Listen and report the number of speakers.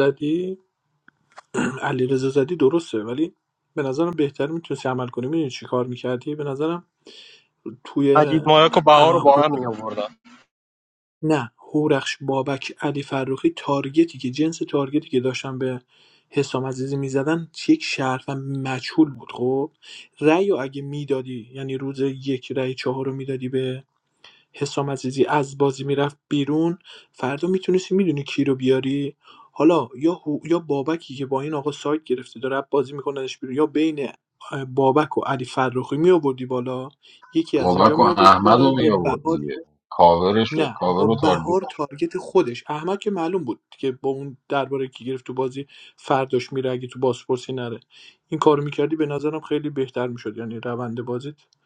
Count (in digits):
3